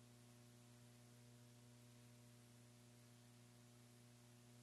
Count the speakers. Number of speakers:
zero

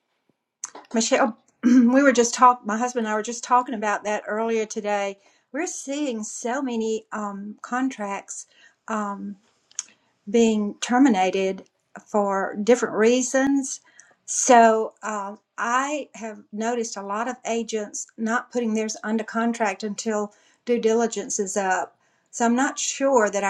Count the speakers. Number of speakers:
one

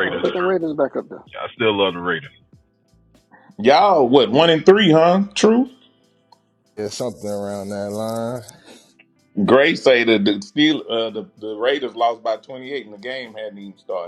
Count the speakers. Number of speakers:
four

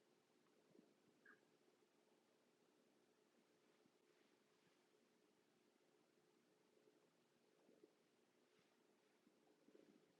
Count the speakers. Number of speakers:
zero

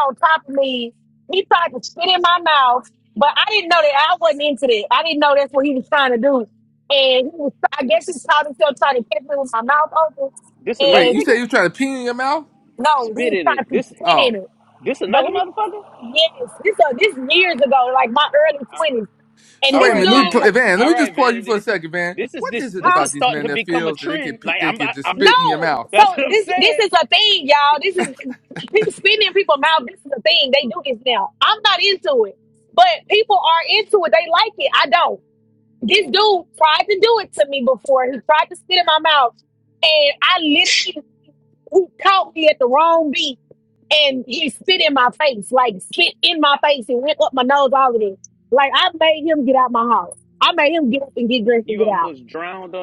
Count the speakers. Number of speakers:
three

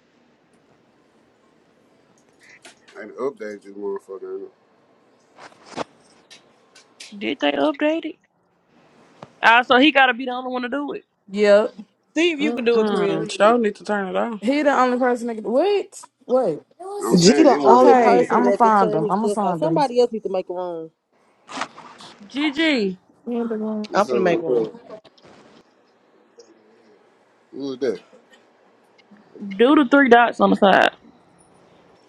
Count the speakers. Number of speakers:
six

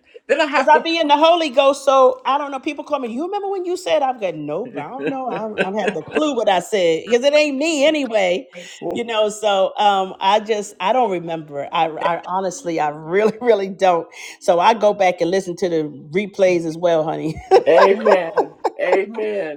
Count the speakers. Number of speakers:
two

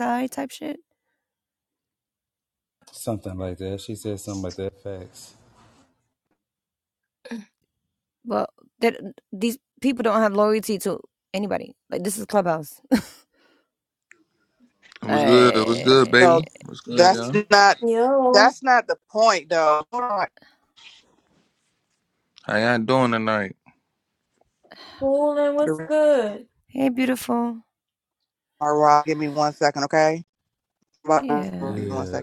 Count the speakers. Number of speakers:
five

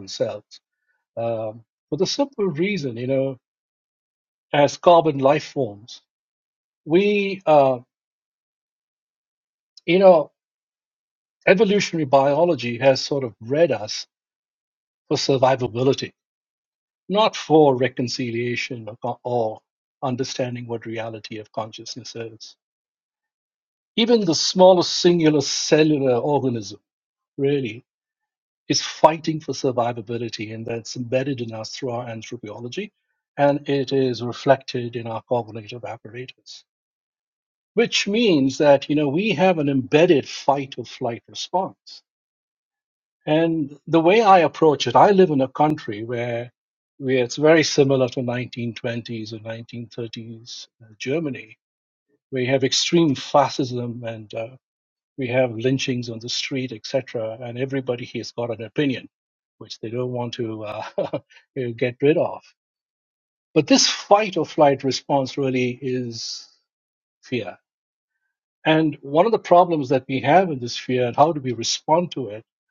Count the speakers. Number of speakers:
one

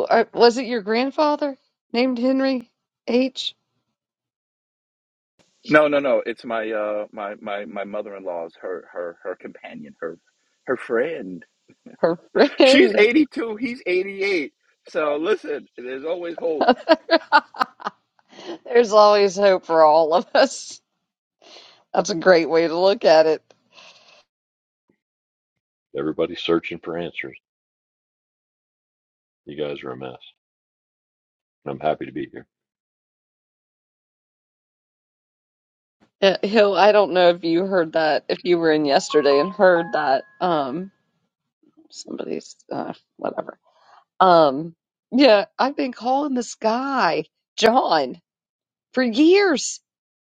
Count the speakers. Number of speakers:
three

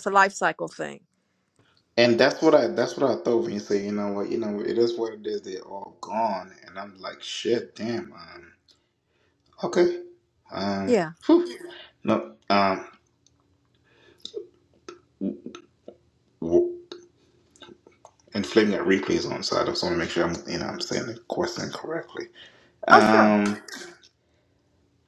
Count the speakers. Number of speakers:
two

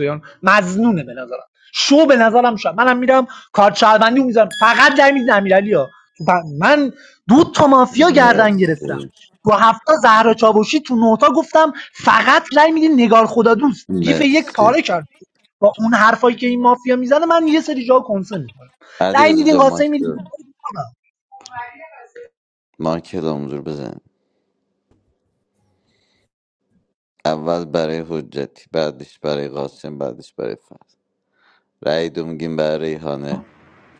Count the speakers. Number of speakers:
two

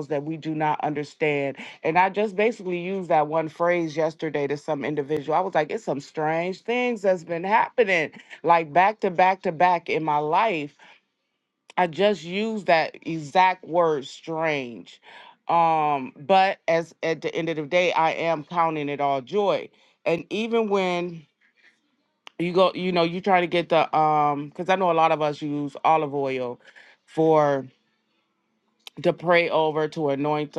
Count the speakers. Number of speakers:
one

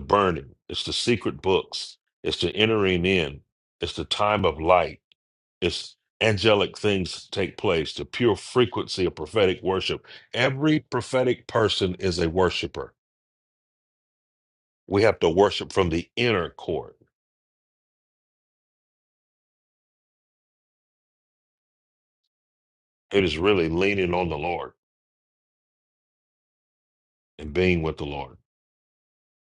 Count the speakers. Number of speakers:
one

